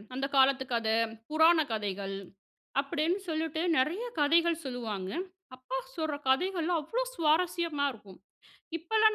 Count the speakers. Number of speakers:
one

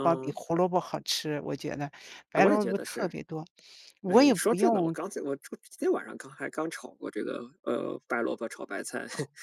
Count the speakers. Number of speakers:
two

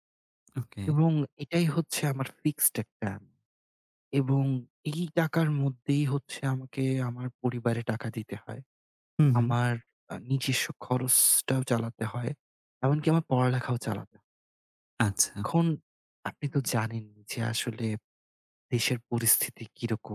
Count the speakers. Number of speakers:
two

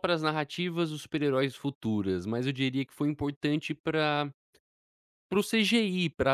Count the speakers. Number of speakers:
one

